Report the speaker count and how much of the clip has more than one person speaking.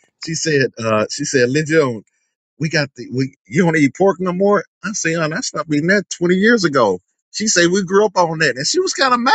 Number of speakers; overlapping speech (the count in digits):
1, no overlap